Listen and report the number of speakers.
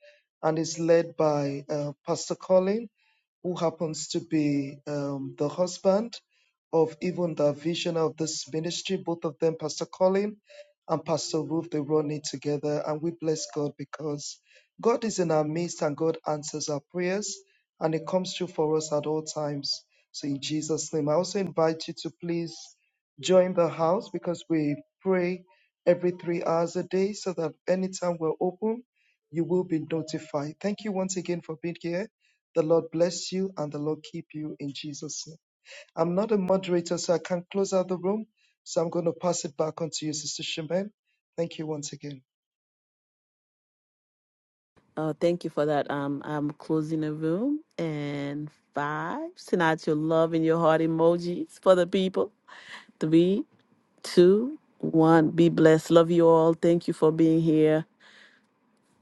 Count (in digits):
2